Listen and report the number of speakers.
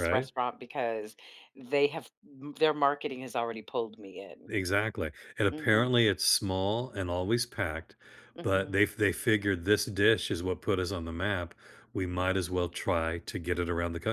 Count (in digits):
2